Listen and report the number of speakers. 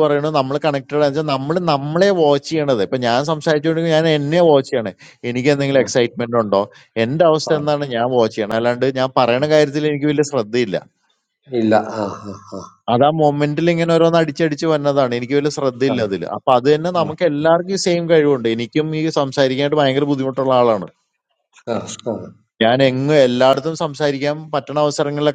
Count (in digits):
2